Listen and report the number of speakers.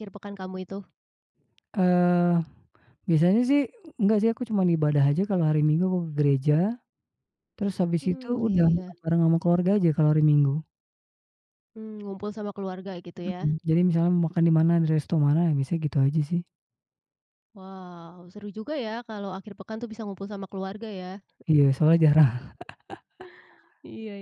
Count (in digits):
2